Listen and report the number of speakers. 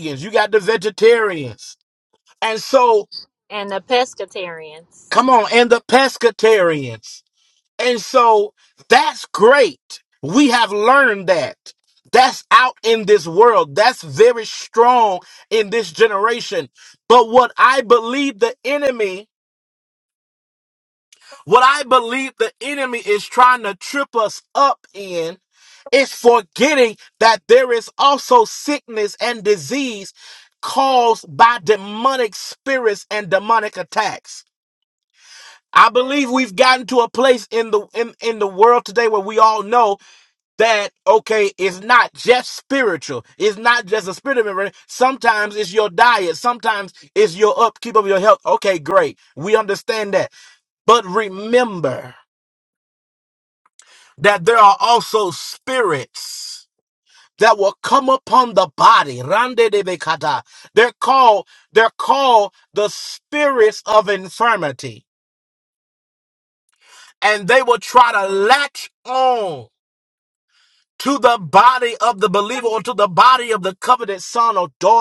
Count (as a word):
two